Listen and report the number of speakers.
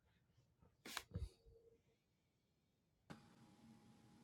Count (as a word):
zero